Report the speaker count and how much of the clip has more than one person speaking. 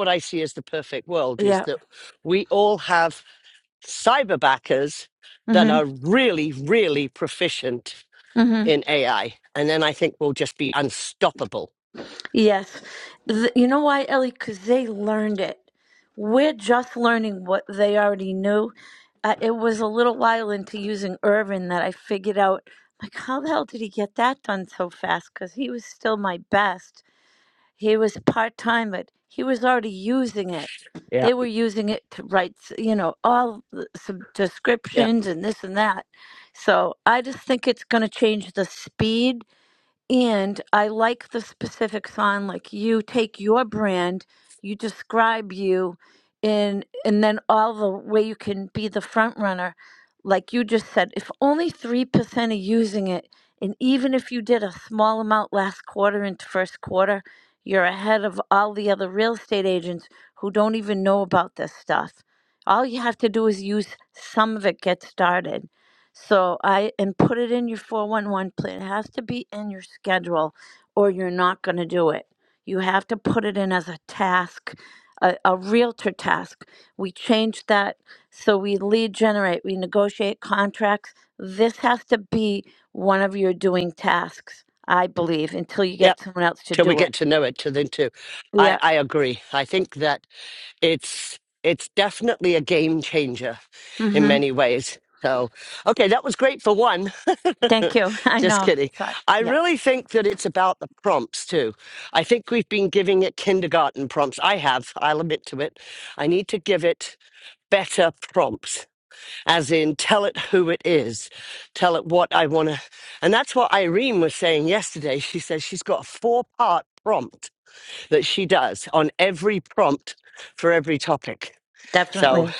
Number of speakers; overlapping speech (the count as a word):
two, about 2%